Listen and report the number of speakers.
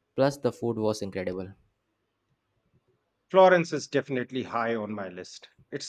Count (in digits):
2